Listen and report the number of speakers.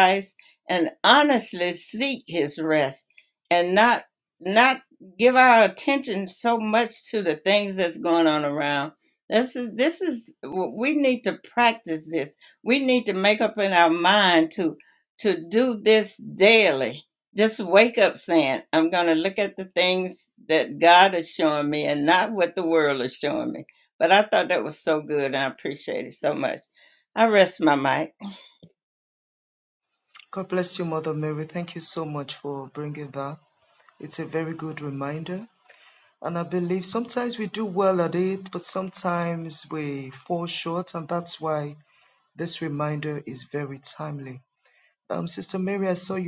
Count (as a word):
two